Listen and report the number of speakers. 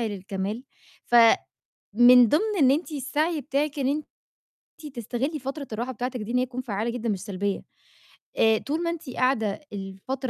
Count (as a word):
one